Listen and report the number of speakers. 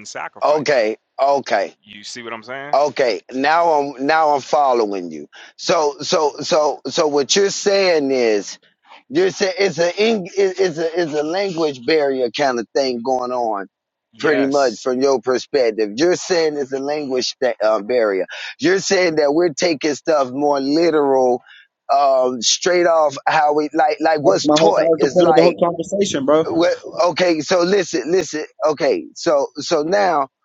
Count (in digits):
3